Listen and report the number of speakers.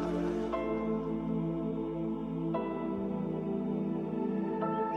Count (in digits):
0